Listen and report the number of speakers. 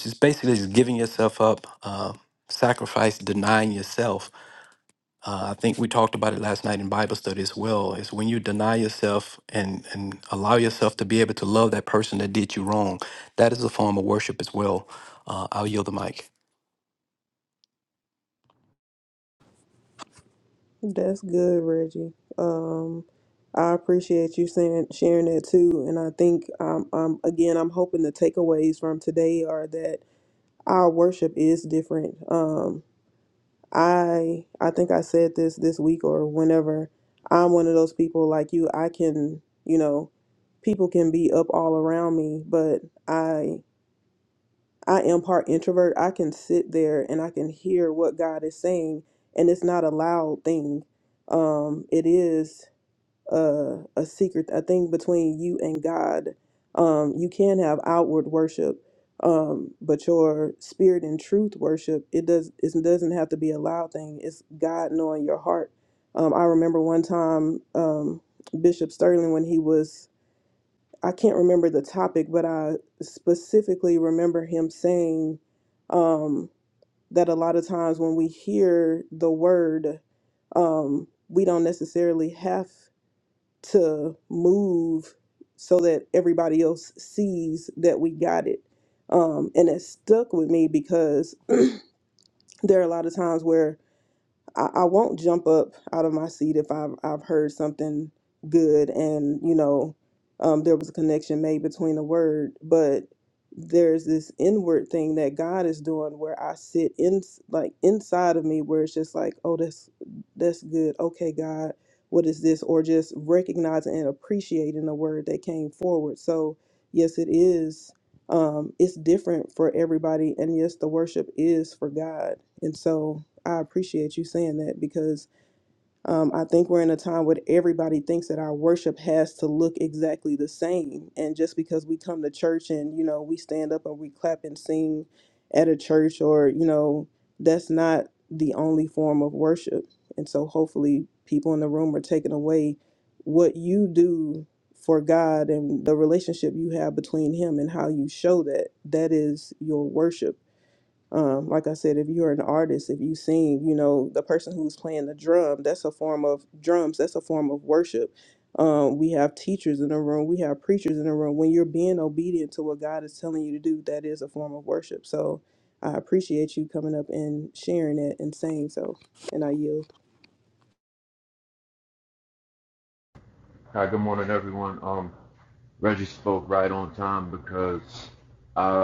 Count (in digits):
3